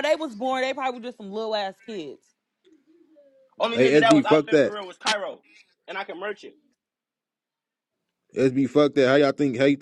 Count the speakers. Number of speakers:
three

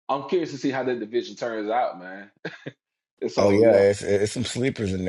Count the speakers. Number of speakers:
two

